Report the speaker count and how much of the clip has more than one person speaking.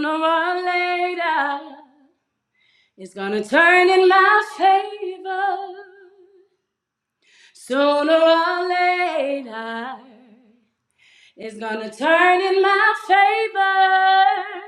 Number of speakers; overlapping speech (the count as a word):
one, no overlap